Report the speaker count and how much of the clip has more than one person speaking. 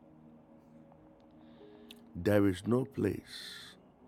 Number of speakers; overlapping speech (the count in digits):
1, no overlap